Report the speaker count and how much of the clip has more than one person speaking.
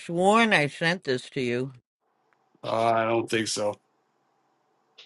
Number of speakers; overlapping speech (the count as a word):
two, no overlap